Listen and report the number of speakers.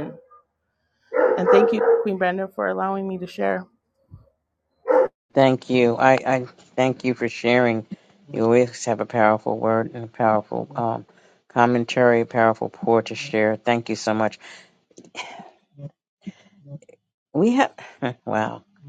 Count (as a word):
two